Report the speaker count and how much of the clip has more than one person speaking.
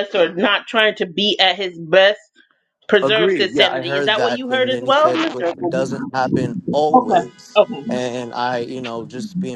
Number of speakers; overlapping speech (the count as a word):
two, about 28%